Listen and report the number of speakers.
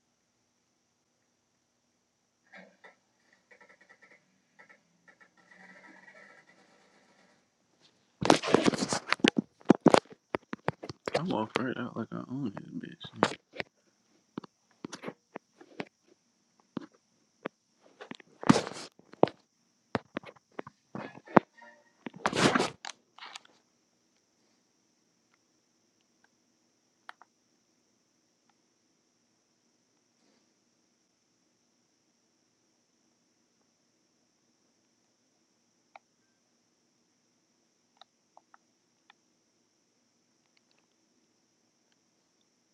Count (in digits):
1